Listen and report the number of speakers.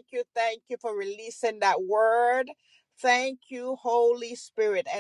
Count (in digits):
1